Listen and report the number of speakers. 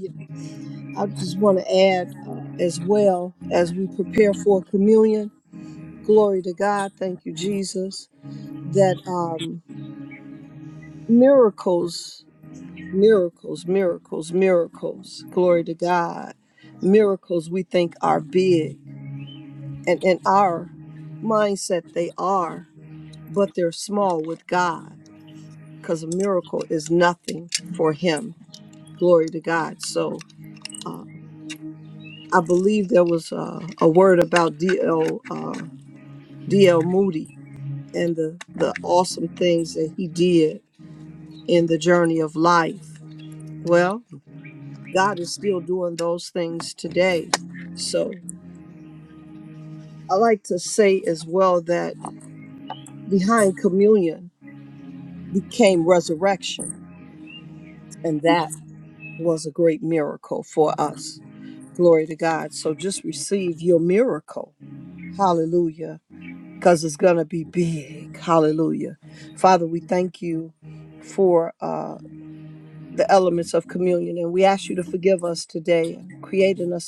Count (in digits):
1